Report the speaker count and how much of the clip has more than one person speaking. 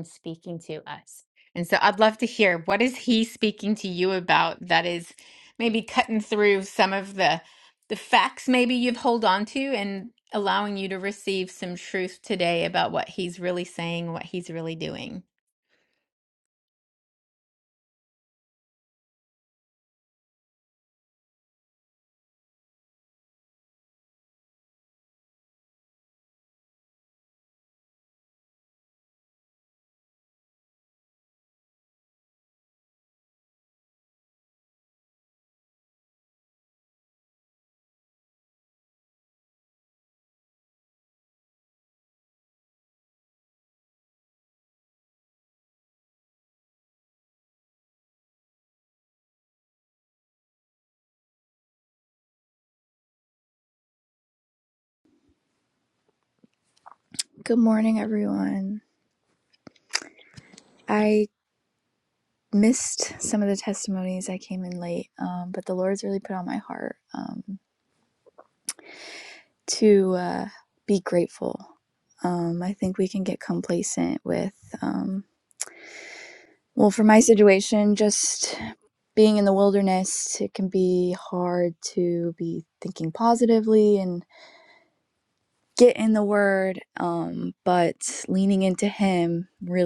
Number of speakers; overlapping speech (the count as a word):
two, no overlap